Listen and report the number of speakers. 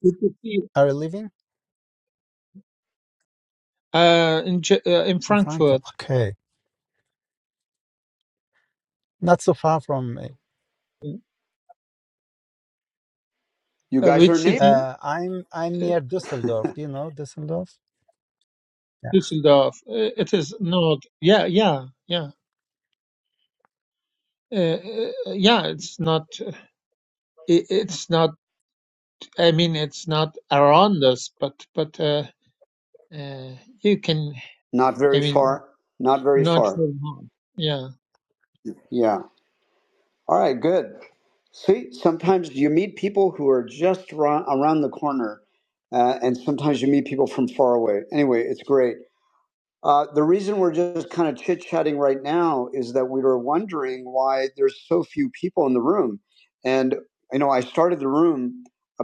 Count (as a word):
three